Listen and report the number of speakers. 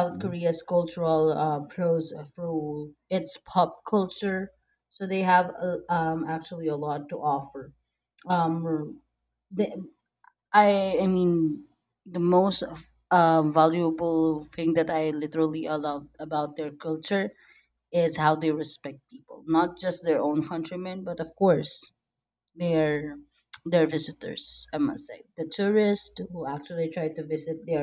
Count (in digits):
1